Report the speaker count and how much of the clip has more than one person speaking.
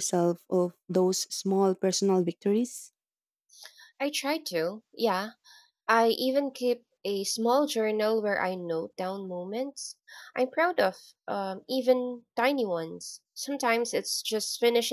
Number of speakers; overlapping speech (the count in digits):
2, no overlap